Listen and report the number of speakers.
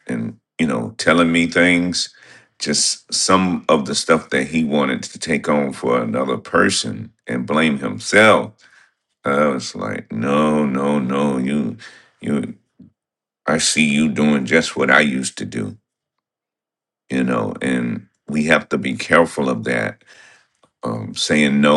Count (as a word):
one